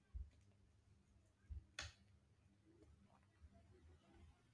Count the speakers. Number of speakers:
0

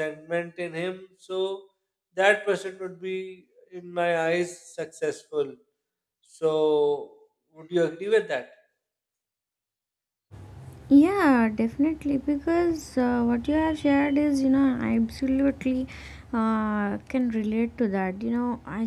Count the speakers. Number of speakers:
2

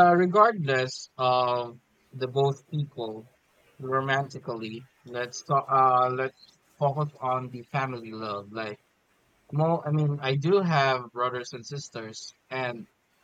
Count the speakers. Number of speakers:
1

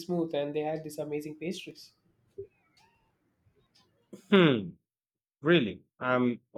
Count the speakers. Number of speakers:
2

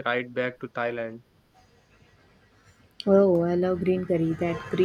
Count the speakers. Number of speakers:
2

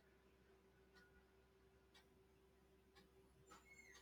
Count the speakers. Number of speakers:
0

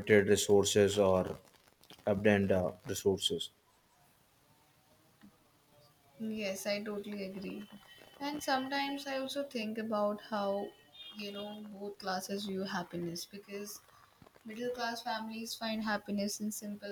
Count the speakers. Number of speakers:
2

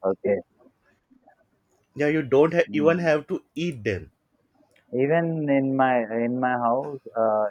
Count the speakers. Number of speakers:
2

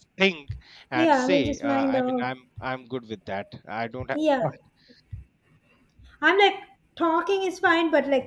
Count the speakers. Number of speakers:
2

